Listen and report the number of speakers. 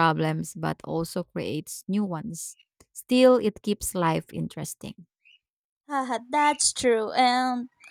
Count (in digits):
2